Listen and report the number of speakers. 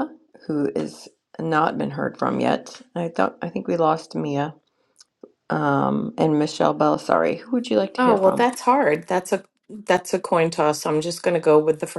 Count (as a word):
two